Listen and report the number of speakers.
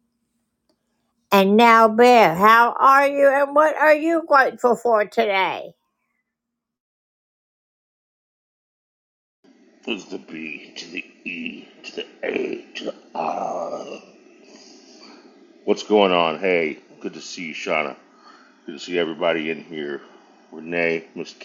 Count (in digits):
2